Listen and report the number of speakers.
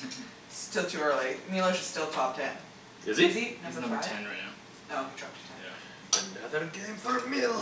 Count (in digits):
3